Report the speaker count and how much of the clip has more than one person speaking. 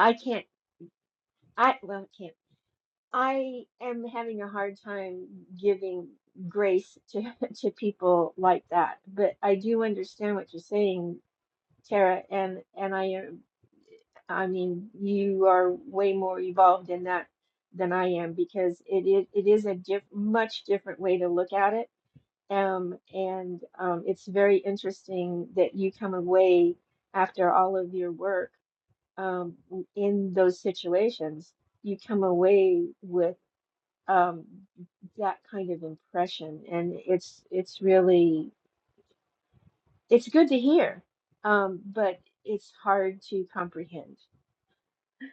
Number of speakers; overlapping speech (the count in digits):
1, no overlap